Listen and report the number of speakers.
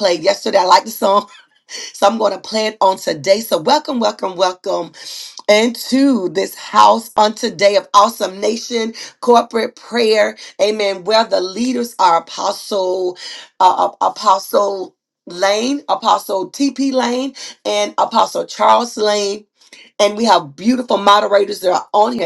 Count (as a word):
one